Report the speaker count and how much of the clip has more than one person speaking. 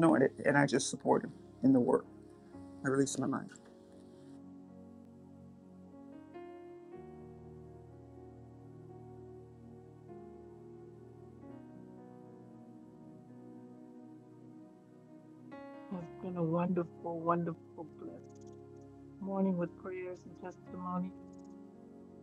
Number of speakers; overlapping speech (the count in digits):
2, no overlap